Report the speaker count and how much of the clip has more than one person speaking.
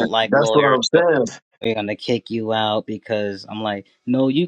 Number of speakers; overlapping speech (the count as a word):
two, about 17%